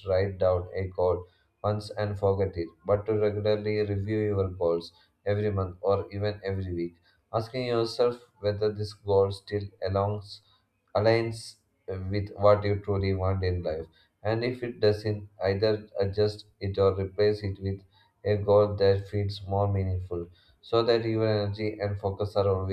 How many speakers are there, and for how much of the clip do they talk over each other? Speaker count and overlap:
one, no overlap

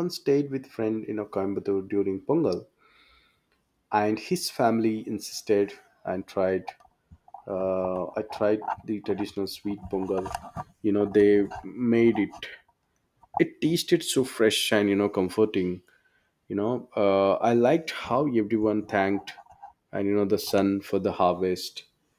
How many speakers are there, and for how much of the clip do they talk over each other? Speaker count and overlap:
one, no overlap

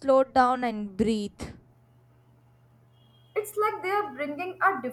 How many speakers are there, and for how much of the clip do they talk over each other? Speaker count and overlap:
two, no overlap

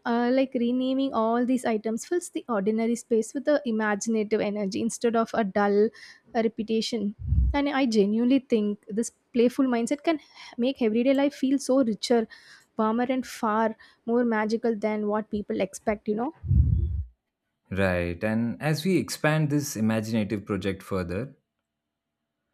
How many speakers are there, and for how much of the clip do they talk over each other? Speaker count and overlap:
two, no overlap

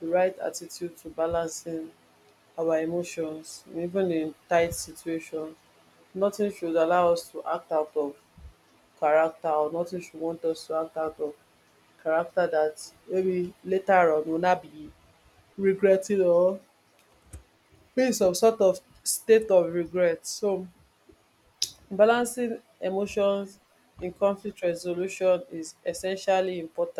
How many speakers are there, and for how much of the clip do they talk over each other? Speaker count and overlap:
one, no overlap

